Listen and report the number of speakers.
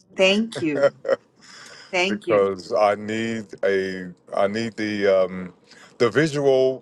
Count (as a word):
two